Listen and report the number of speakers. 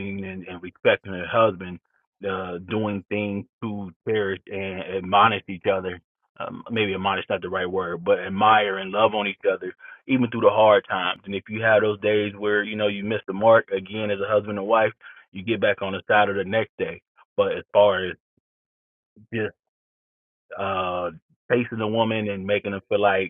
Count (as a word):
one